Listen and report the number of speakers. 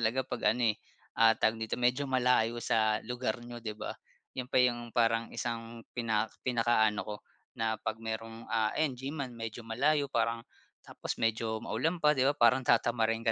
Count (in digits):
1